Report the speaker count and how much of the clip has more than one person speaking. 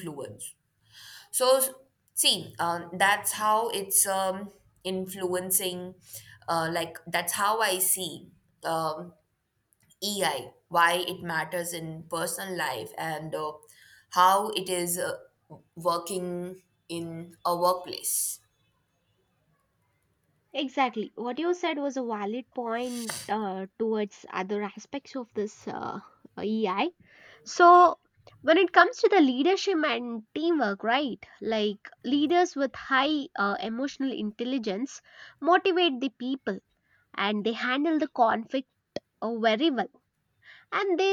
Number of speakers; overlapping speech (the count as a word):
two, no overlap